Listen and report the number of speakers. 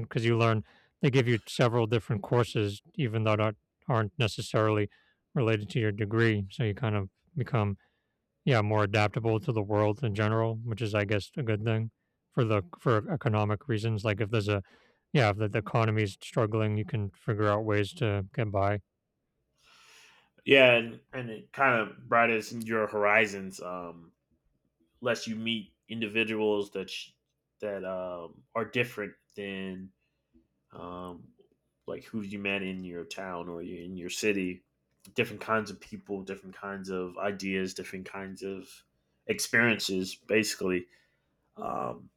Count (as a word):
two